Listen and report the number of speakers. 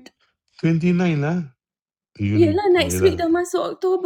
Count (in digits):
2